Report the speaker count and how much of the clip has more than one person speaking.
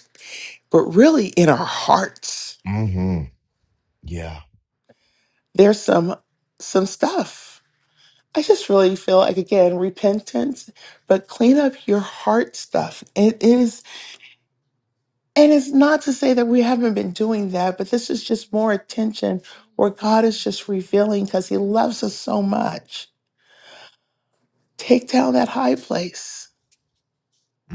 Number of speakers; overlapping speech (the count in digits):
2, no overlap